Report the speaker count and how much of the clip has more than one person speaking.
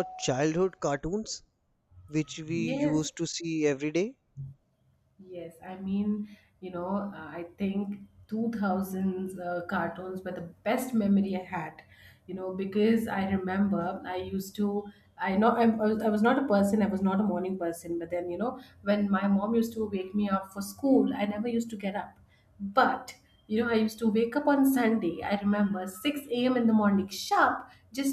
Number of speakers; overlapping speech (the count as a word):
two, about 2%